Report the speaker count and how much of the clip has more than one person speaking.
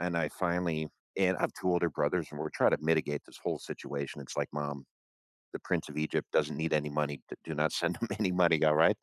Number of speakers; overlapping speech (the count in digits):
1, no overlap